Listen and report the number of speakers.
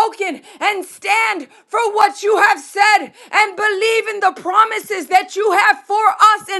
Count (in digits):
1